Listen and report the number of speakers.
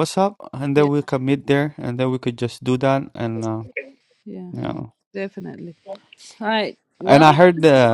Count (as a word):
two